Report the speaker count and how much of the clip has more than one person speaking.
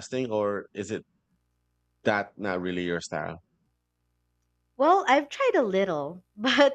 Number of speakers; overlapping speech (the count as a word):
two, no overlap